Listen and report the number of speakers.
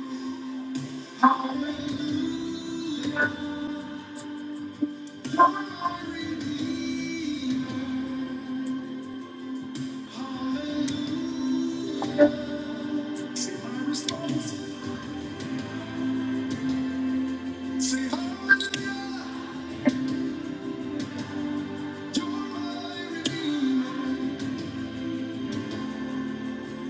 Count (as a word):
zero